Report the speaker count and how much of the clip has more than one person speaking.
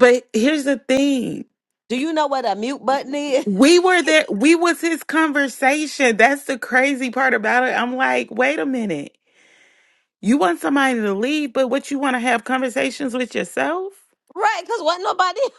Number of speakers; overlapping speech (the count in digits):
2, no overlap